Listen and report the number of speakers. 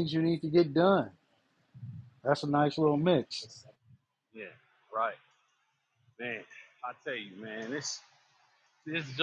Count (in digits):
2